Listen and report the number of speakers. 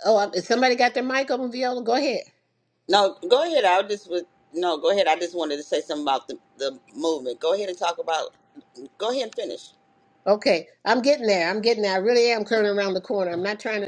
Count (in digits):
2